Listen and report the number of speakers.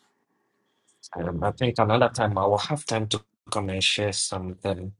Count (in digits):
1